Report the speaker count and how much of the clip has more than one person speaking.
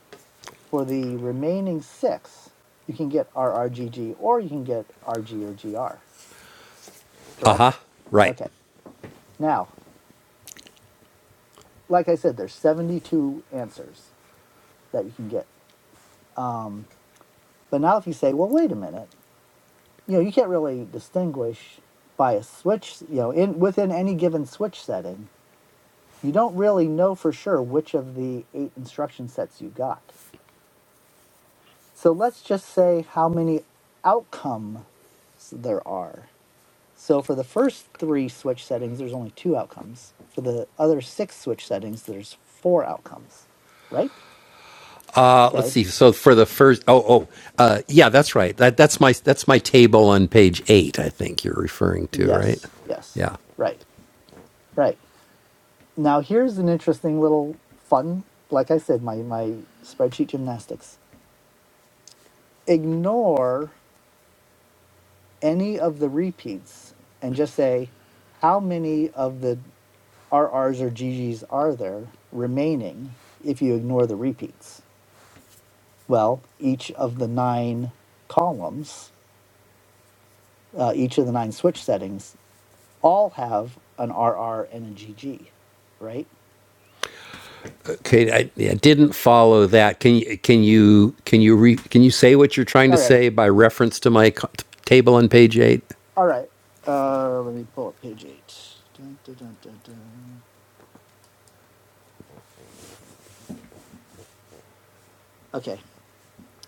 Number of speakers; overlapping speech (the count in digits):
2, about 1%